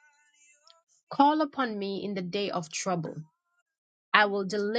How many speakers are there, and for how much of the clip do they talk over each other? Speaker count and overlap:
1, no overlap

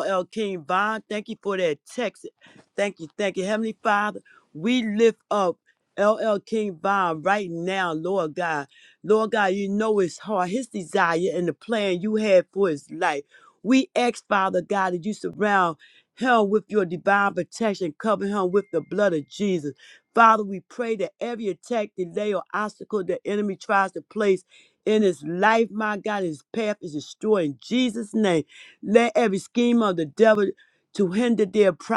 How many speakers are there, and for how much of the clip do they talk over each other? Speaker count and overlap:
1, no overlap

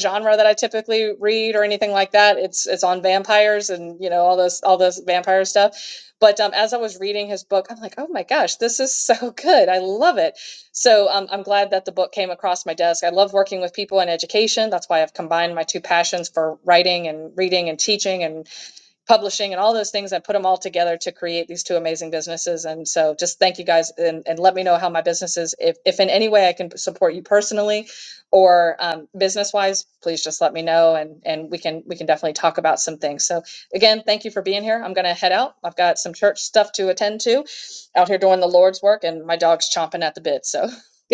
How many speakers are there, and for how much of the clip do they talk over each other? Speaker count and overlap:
1, no overlap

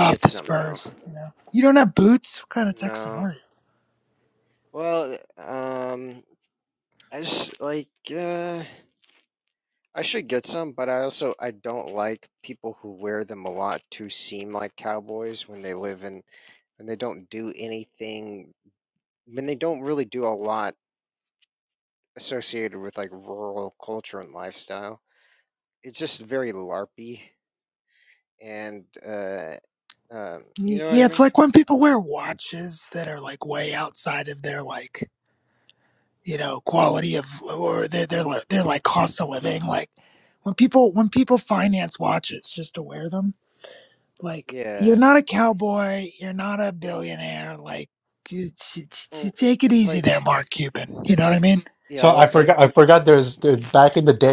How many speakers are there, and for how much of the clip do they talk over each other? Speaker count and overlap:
3, about 8%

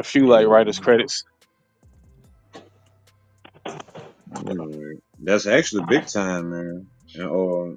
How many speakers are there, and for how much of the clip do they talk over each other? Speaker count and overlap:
2, about 2%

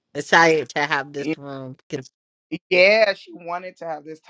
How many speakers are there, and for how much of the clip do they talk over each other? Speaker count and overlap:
2, about 4%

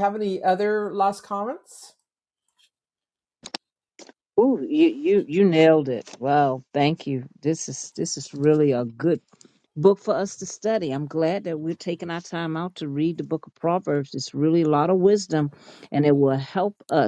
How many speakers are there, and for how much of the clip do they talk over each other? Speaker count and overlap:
2, no overlap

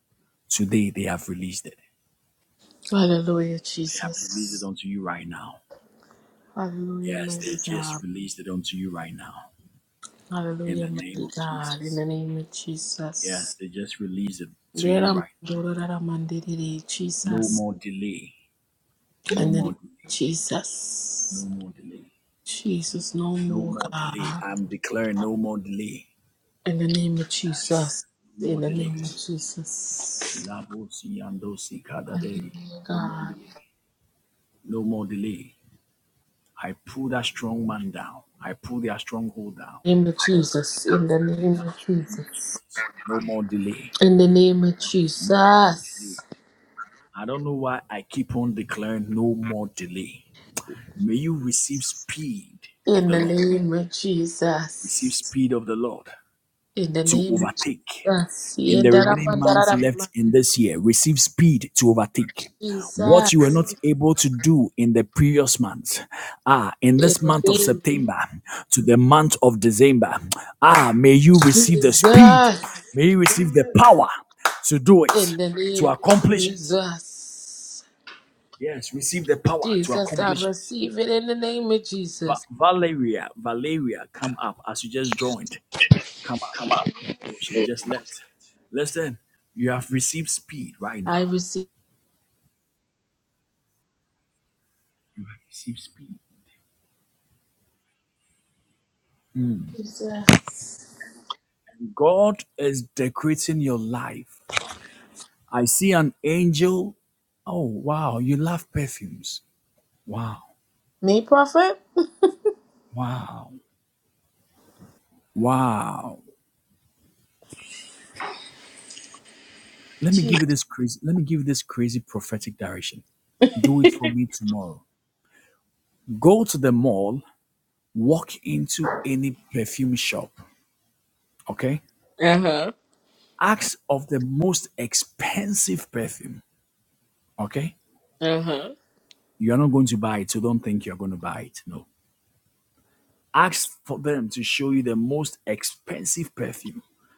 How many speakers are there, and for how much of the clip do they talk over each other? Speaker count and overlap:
2, about 9%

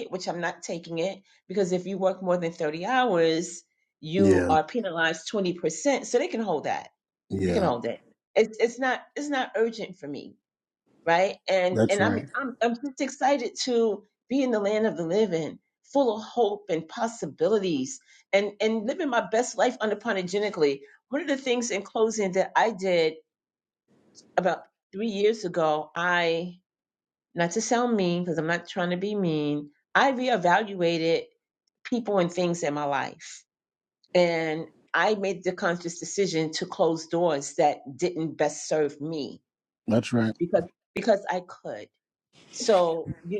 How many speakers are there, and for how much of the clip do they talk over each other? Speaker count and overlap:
2, about 3%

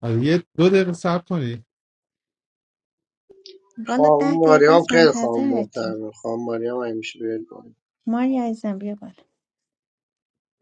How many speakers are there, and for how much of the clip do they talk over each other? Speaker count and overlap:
3, about 19%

